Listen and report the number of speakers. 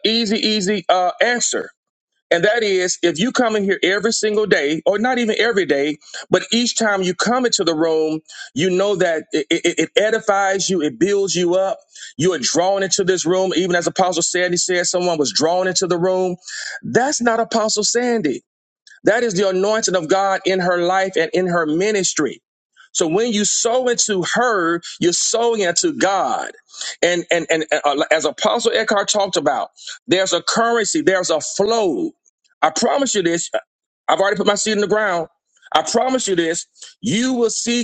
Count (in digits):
1